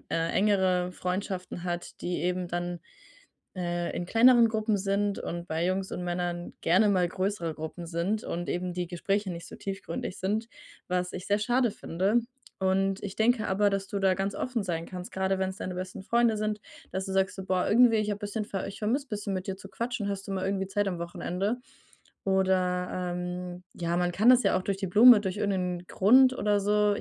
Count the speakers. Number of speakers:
one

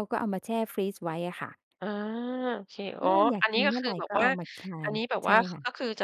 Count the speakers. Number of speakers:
two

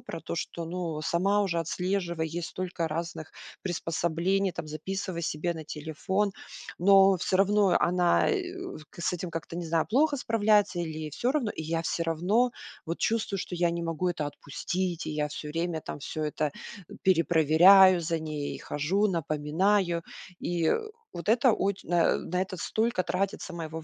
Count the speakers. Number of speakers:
one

